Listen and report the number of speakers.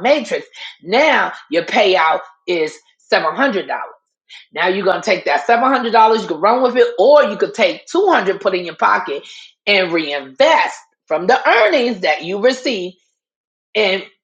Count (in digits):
1